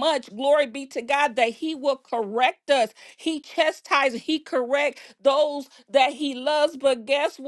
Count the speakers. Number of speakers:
1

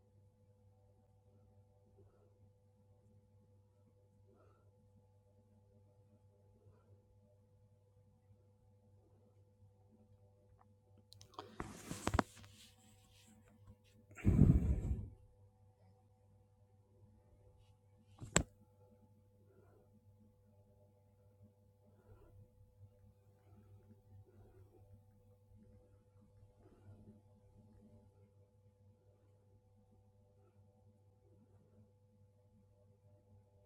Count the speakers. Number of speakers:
0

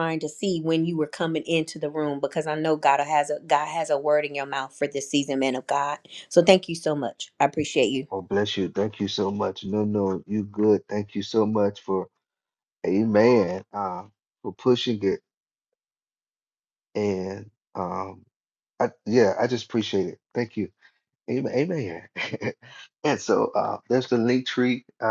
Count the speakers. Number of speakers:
2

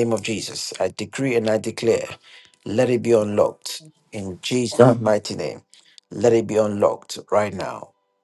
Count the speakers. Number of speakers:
1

